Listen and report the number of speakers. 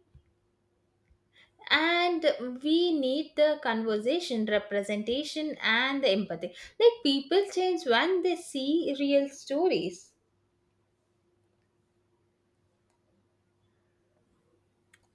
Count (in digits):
1